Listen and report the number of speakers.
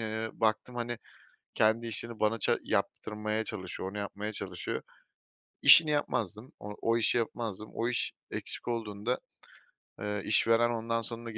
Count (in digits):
1